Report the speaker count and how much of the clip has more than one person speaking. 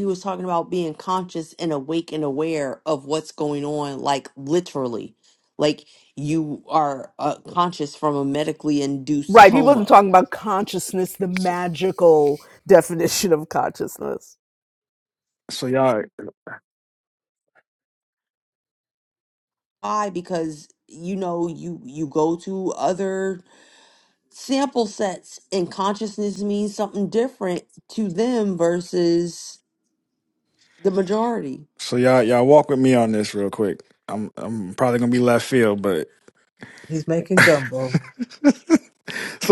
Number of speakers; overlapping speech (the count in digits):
4, about 2%